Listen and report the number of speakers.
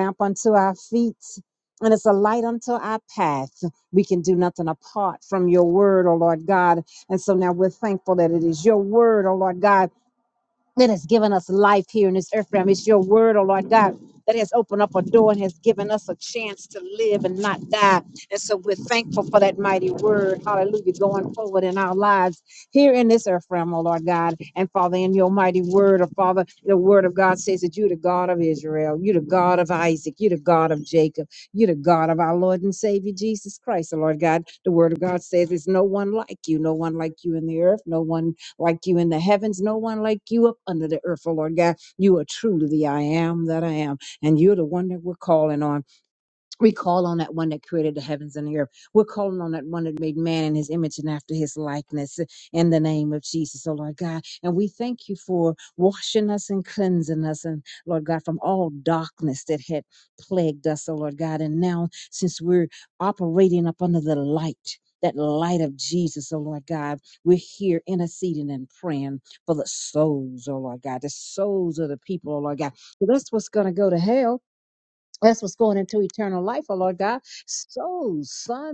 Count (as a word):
one